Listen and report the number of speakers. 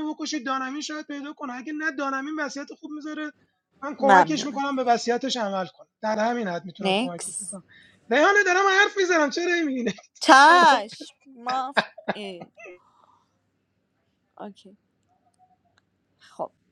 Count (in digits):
2